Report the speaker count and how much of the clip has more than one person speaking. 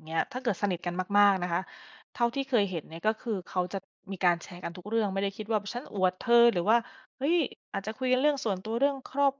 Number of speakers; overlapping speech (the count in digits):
1, no overlap